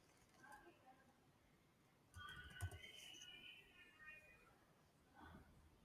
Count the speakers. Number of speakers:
0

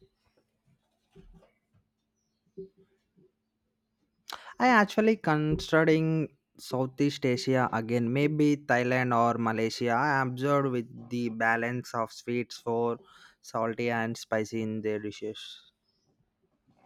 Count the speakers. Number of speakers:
1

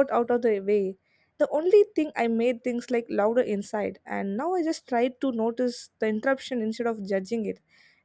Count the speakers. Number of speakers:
1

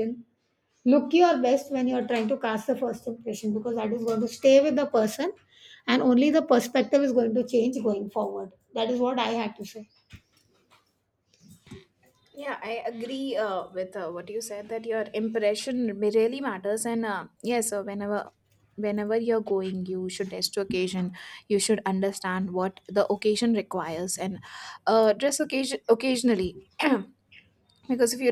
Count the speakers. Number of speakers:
2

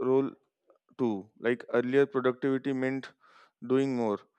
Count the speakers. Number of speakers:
1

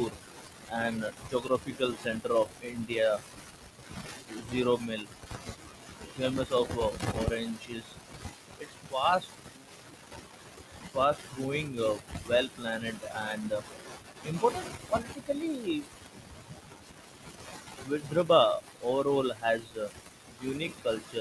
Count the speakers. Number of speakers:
1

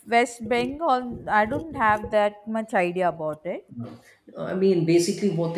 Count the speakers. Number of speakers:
2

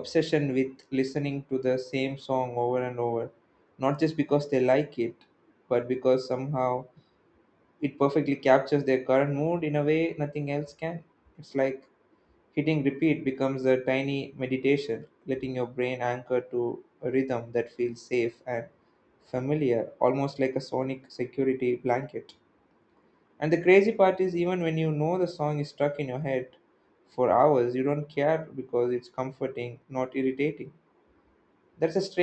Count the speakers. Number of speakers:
1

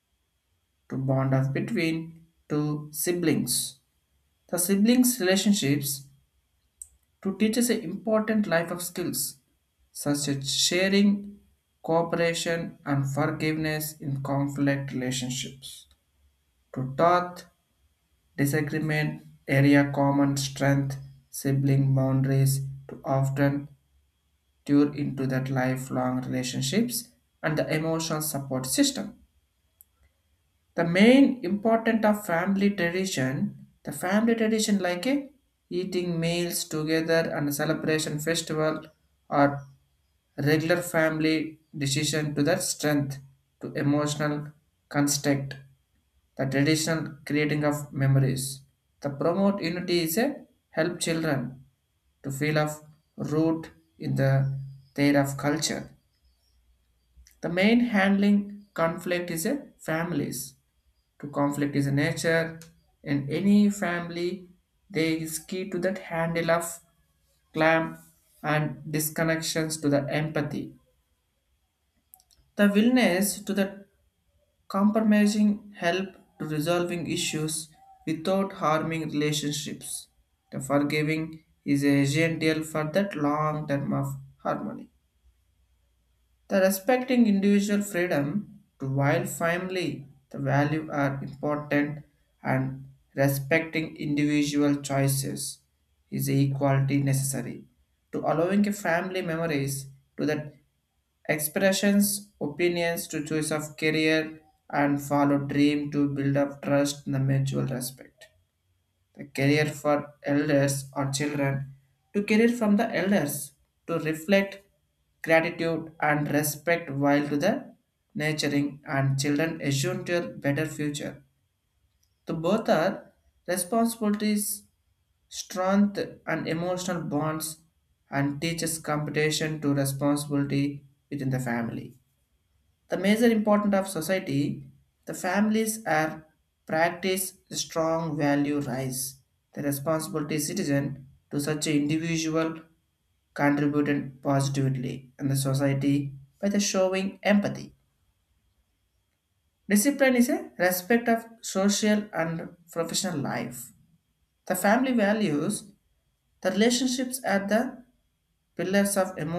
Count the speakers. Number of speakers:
1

